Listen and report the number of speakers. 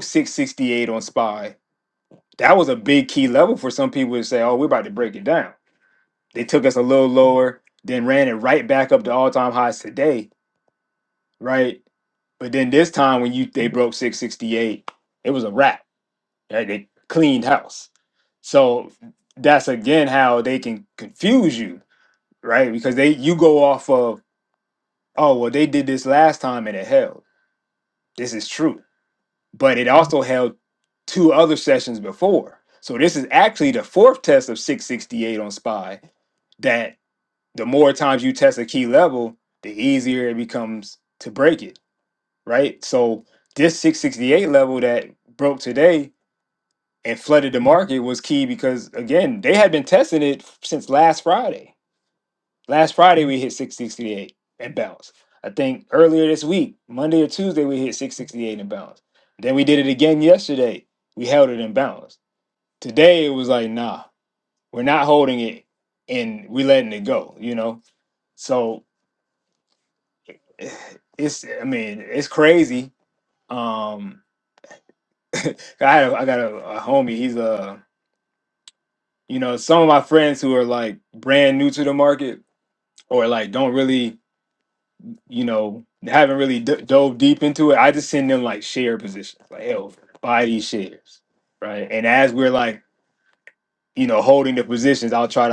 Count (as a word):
one